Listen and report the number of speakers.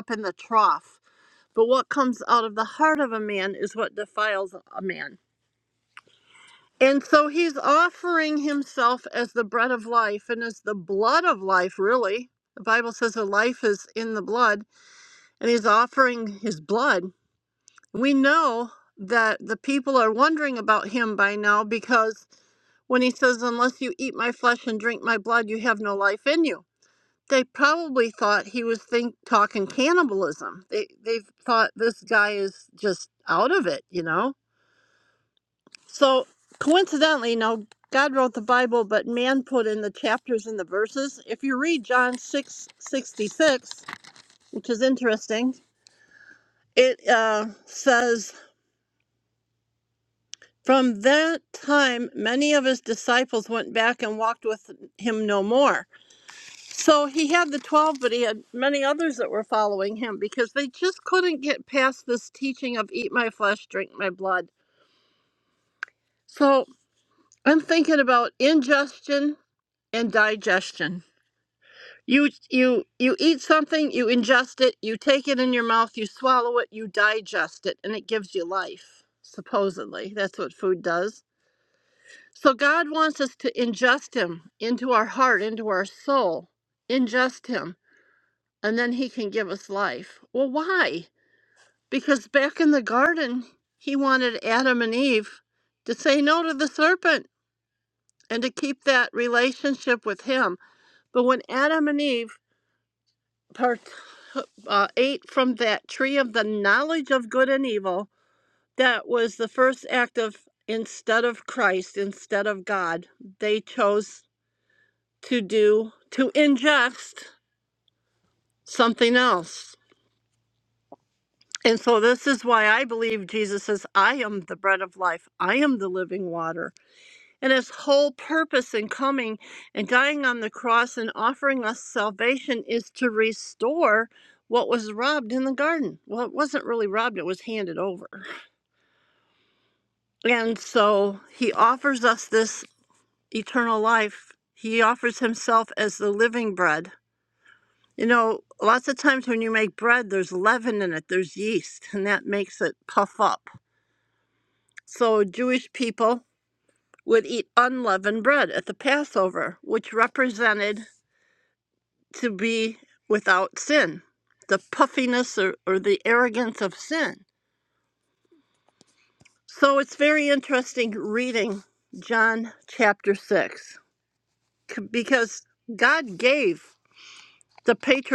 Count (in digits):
1